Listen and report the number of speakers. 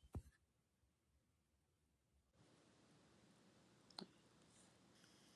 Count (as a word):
zero